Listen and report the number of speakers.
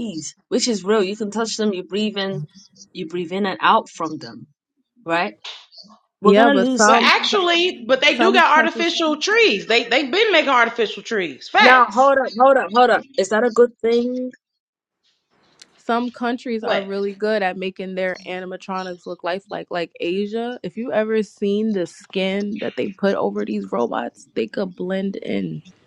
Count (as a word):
three